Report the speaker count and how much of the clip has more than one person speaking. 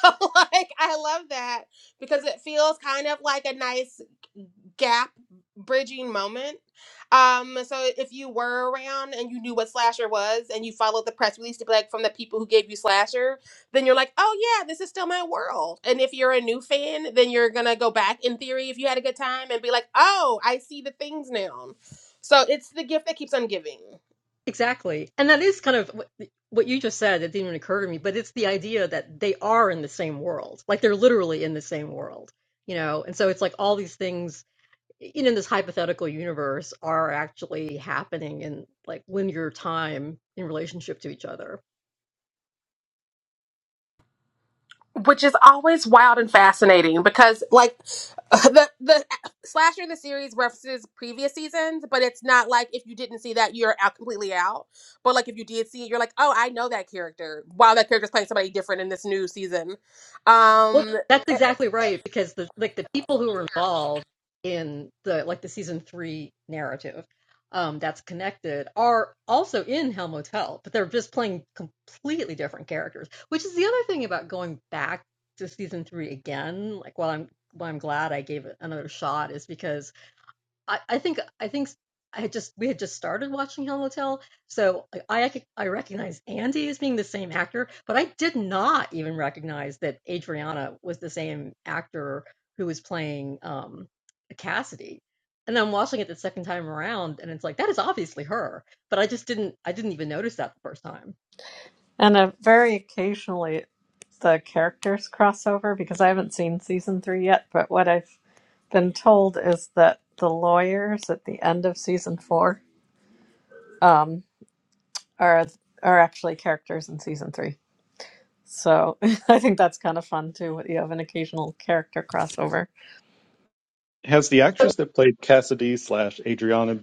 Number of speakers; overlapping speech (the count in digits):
4, about 1%